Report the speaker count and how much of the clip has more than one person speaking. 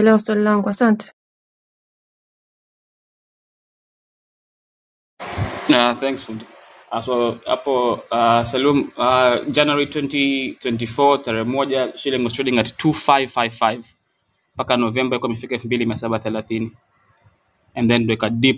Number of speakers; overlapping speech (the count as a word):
two, no overlap